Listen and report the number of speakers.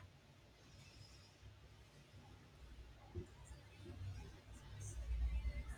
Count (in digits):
0